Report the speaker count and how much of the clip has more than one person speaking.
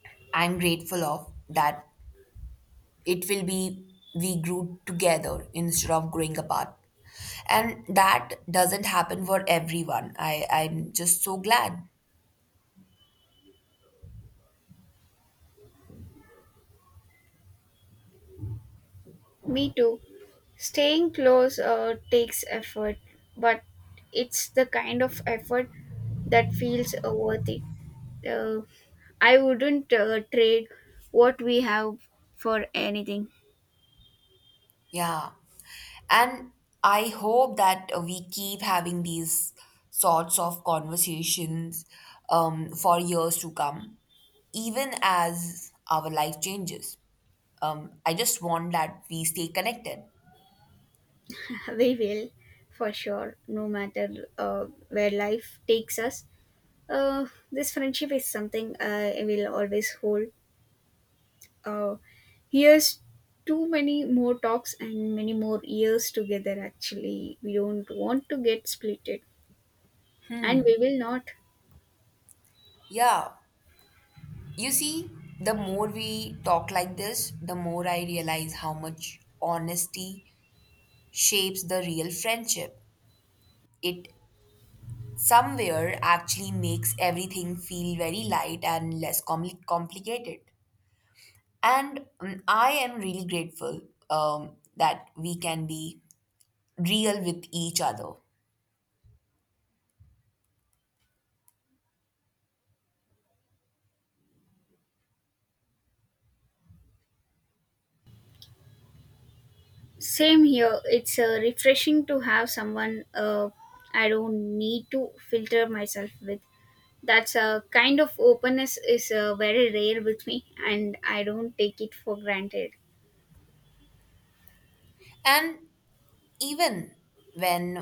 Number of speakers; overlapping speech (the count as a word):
two, no overlap